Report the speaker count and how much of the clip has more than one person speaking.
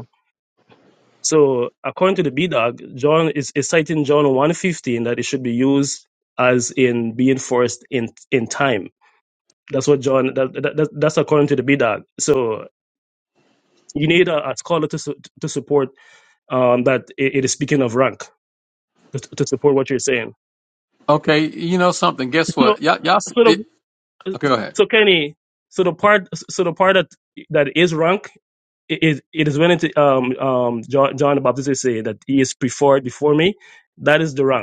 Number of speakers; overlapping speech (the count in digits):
2, about 1%